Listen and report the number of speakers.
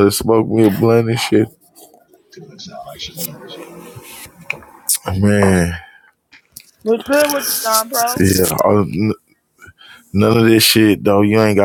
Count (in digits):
3